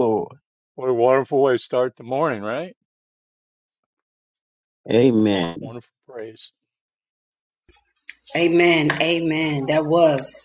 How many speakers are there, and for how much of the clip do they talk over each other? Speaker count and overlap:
3, about 1%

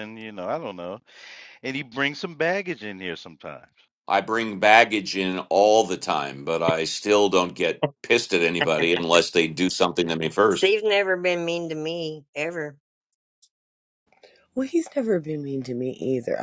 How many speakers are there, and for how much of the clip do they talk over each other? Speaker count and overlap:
4, under 1%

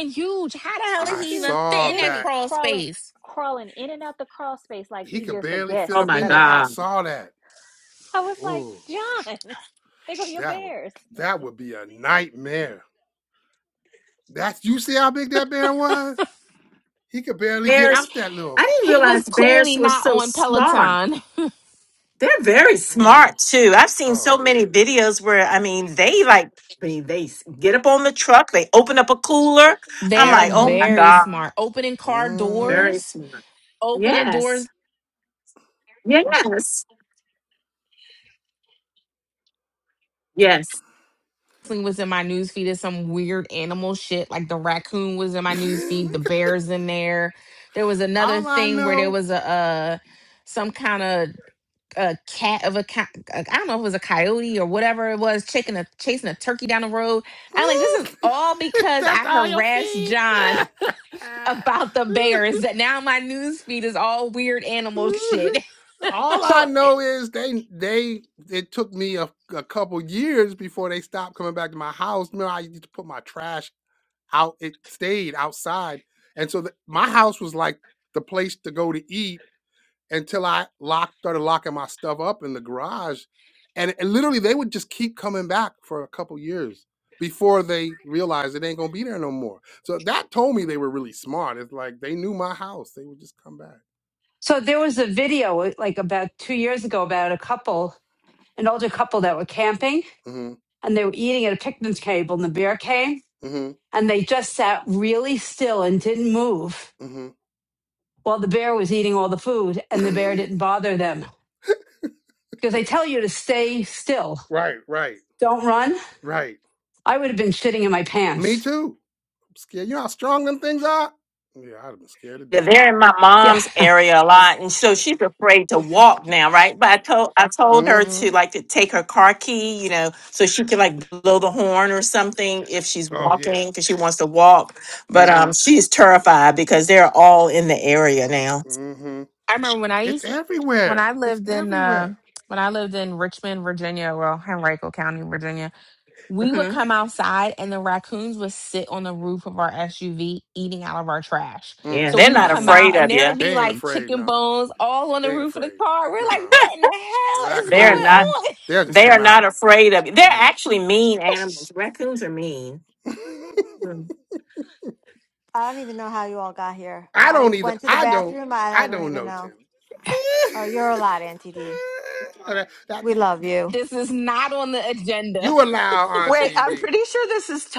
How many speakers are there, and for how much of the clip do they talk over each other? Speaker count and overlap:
7, about 14%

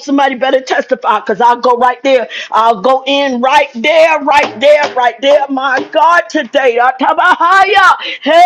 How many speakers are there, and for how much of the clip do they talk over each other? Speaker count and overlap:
1, no overlap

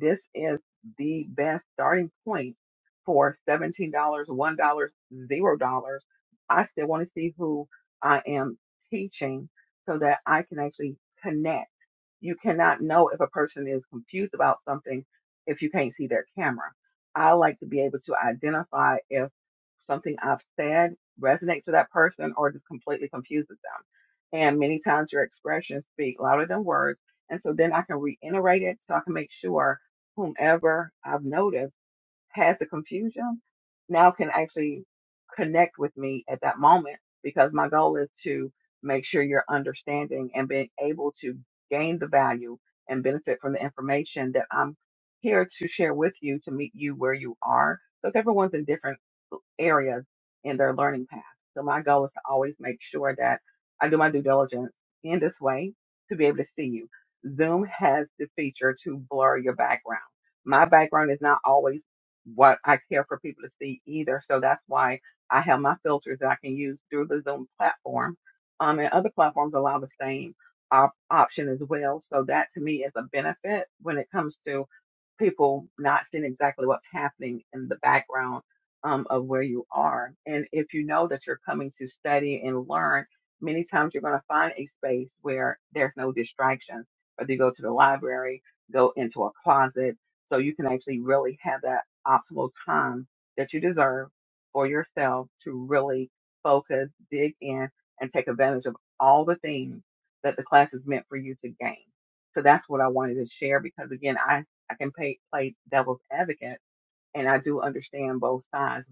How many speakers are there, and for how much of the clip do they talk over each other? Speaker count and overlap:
1, no overlap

